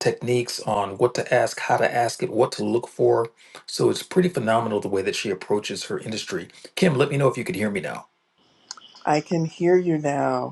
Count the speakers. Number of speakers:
2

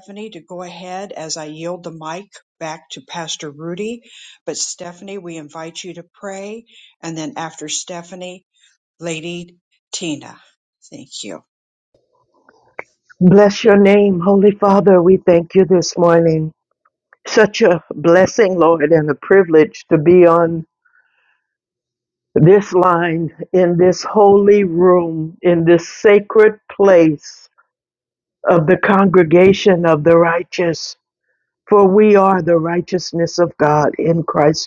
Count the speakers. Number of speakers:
2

